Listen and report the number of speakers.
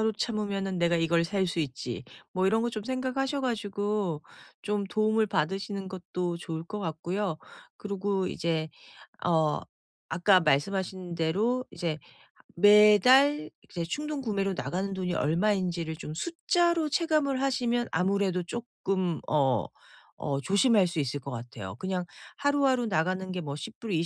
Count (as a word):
one